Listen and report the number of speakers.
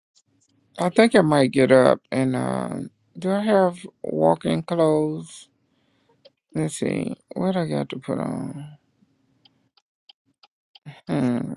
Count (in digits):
1